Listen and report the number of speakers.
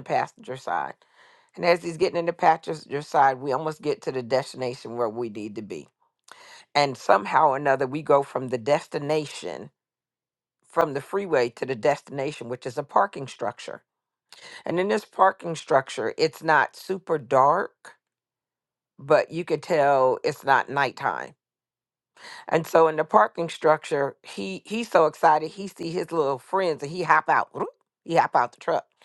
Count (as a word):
one